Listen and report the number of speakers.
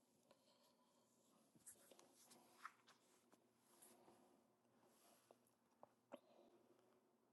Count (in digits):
0